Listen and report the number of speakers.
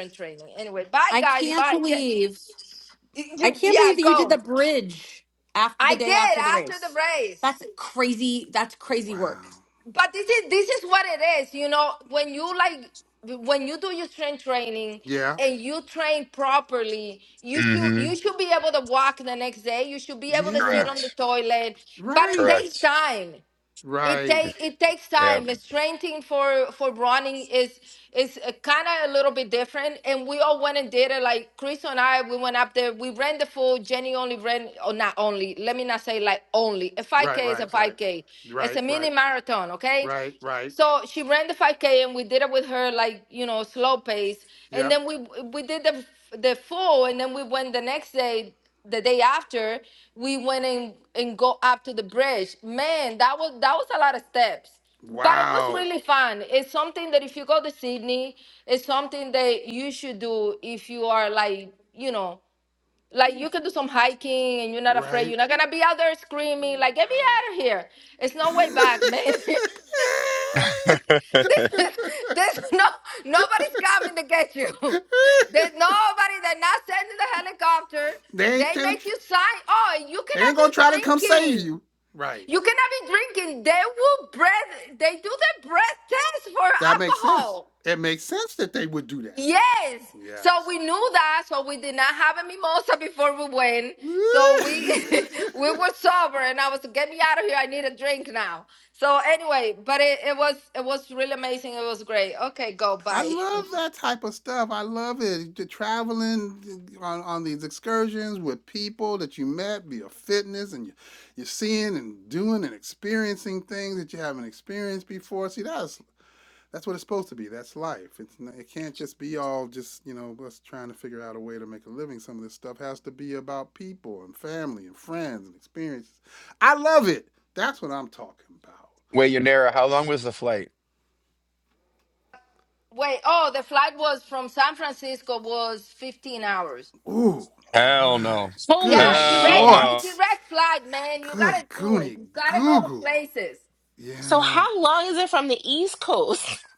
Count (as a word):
five